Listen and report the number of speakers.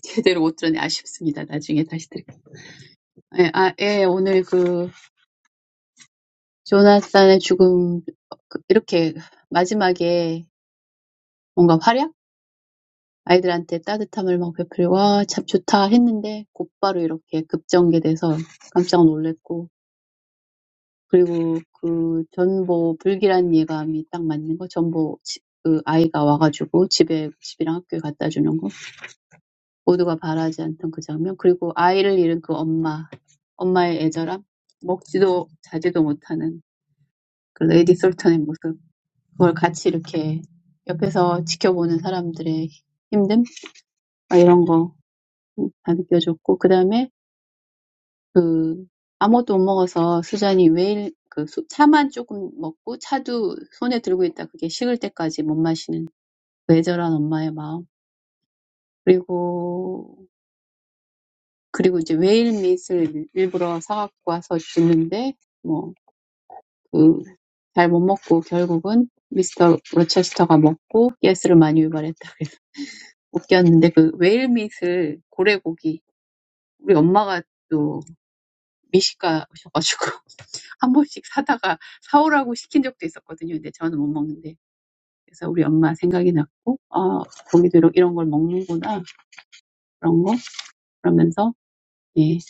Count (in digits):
1